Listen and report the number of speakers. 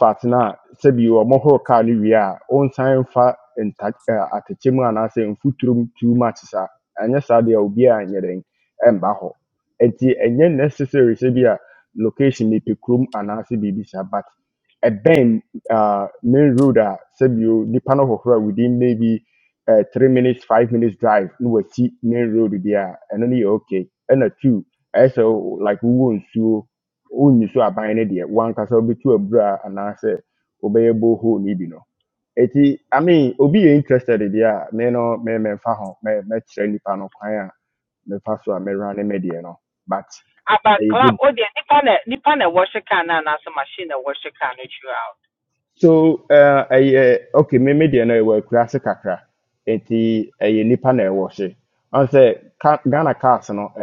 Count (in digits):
2